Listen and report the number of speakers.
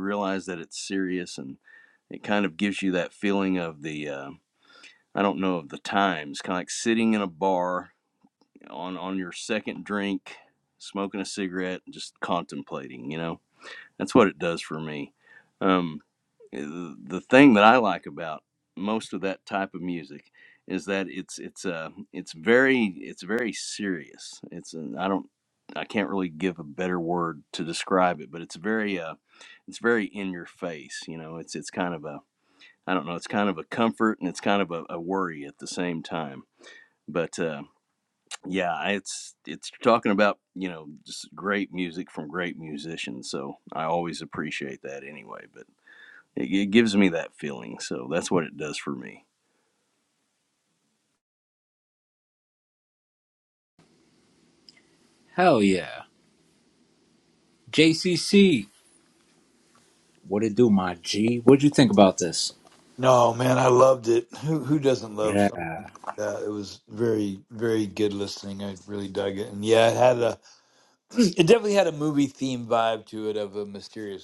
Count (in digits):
3